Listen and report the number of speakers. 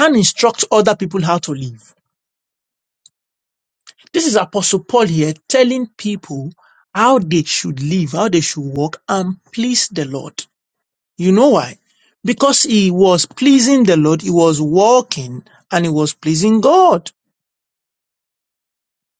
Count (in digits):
1